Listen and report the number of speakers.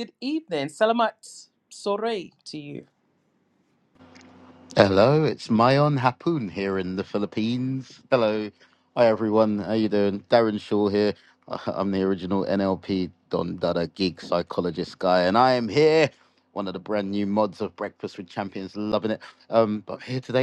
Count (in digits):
2